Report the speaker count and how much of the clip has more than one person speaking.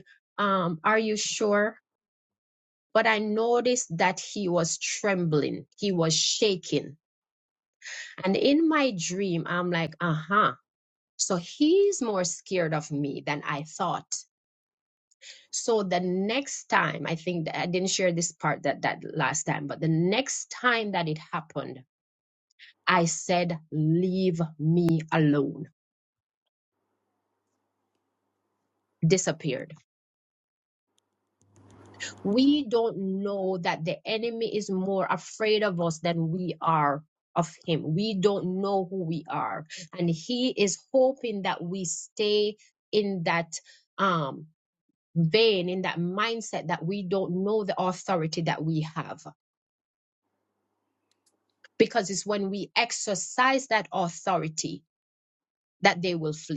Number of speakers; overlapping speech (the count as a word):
one, no overlap